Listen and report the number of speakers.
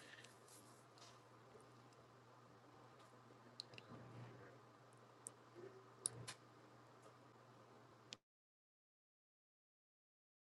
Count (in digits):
0